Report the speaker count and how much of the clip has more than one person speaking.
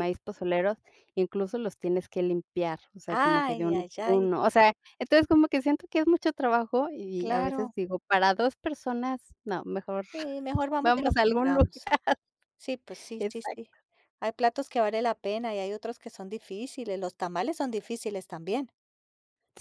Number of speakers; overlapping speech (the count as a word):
two, about 15%